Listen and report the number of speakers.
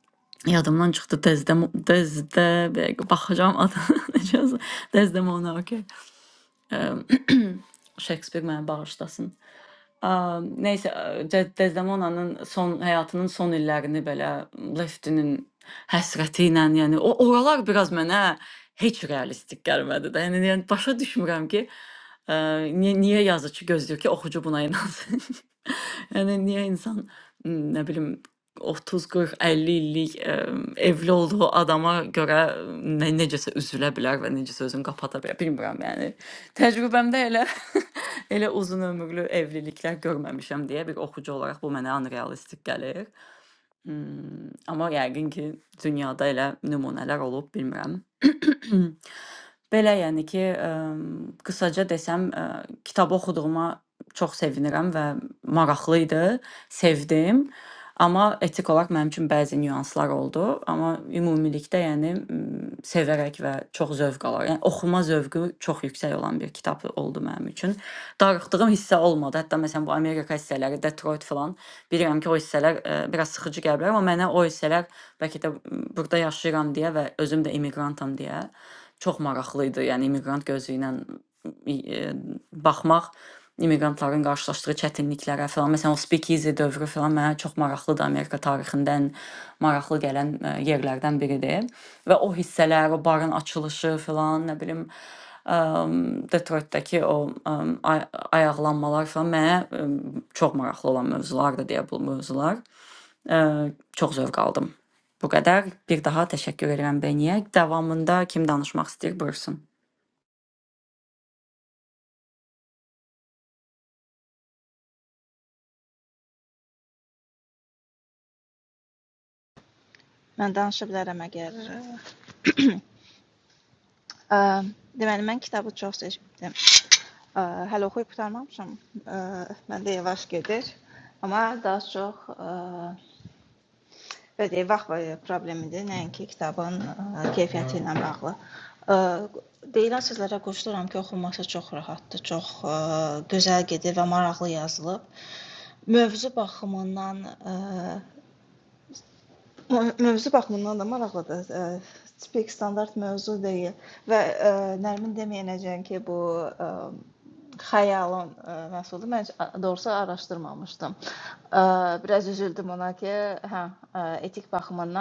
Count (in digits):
2